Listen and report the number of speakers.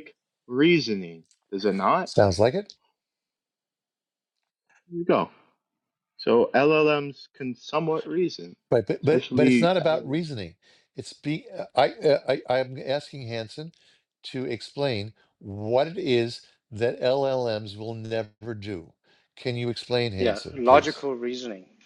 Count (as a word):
three